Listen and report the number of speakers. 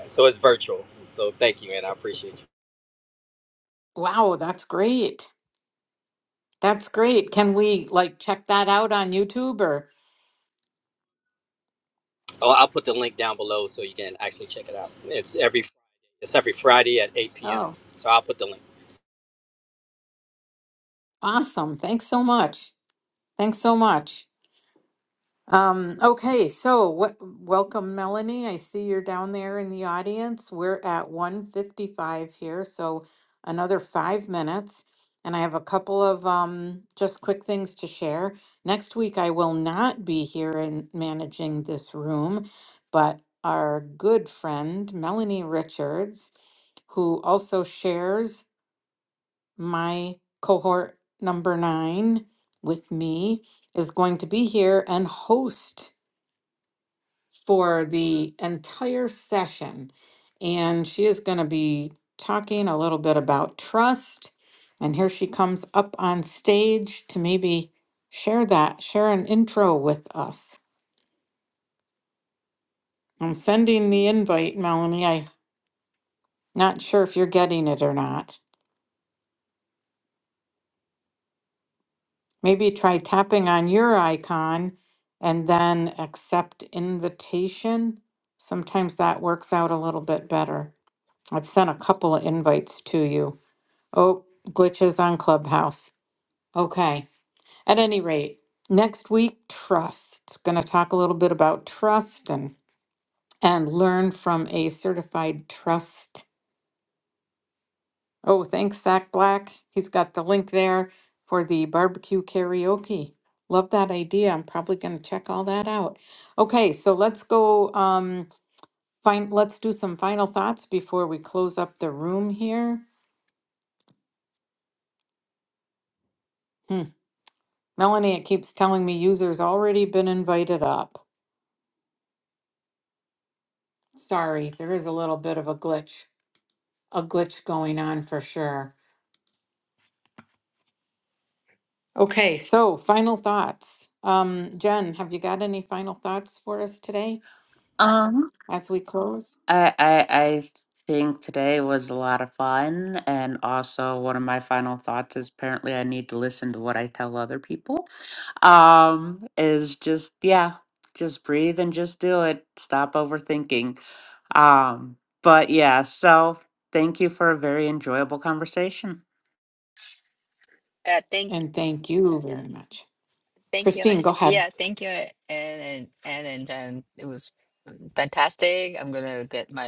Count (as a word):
four